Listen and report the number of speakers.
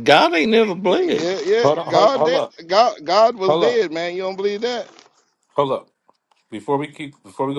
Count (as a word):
three